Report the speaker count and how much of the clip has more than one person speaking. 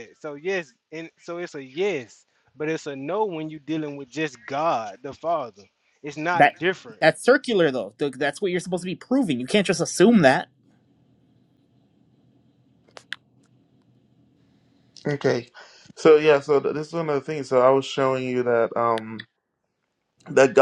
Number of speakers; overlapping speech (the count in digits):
3, about 1%